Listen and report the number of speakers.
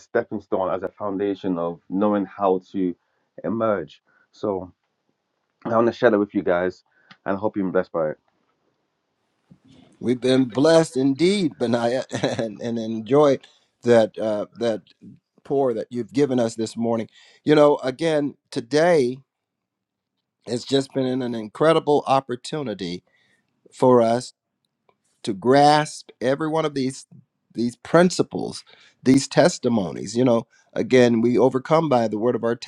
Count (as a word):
two